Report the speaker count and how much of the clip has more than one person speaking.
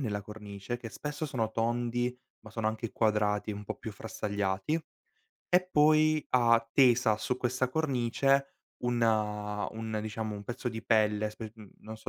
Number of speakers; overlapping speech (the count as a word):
one, no overlap